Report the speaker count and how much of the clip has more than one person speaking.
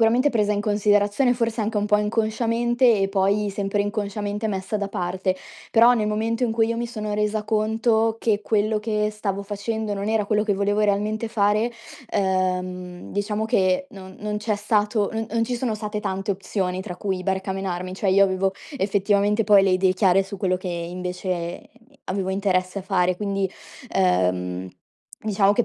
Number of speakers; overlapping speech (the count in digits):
1, no overlap